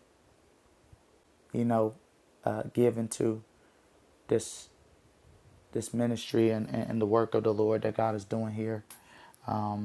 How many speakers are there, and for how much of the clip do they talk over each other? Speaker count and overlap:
one, no overlap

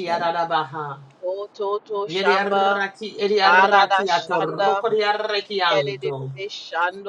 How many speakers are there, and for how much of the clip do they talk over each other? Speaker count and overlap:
two, about 36%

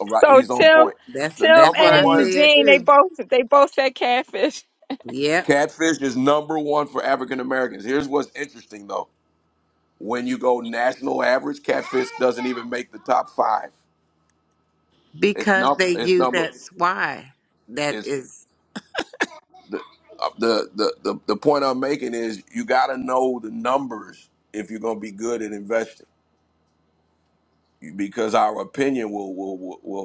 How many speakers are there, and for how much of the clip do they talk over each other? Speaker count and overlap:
three, about 11%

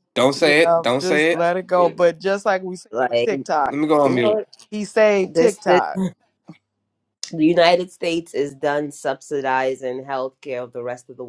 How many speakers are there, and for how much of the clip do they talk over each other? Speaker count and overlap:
three, about 26%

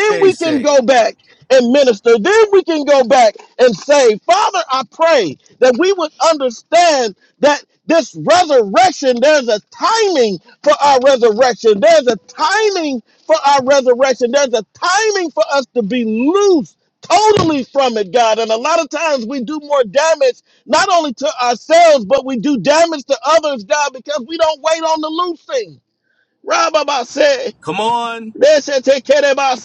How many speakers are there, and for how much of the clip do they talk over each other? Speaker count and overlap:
two, about 2%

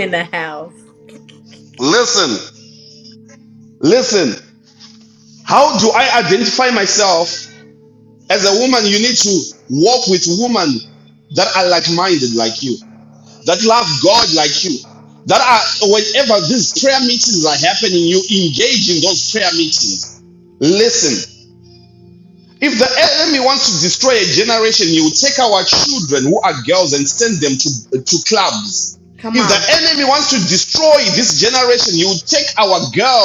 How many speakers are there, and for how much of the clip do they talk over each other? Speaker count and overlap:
two, about 1%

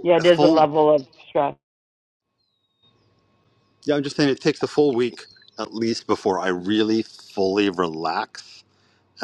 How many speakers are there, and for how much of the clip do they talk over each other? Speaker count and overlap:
two, about 6%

